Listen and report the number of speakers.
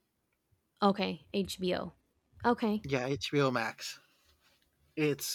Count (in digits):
2